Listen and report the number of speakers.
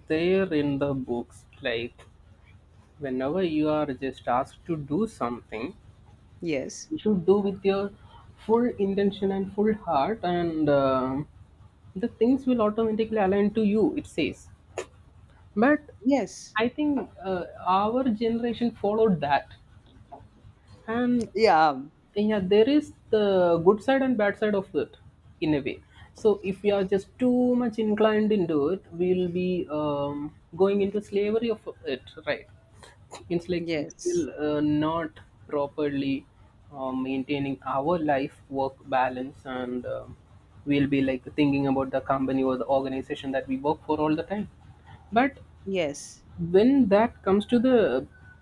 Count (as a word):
two